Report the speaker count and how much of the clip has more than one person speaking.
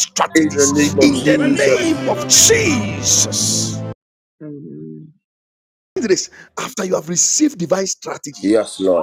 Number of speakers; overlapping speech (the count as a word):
two, about 17%